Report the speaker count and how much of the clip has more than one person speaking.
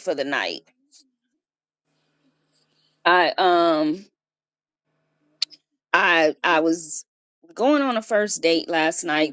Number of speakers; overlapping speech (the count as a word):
one, no overlap